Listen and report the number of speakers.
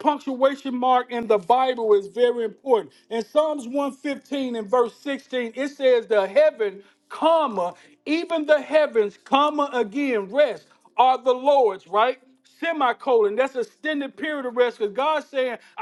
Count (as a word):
one